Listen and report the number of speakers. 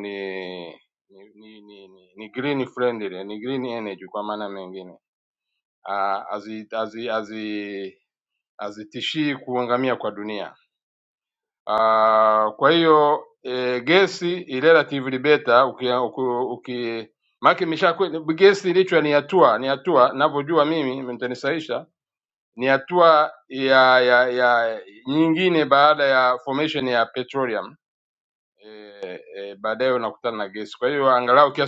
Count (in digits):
1